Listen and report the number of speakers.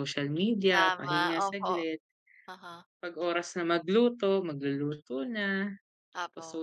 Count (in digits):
2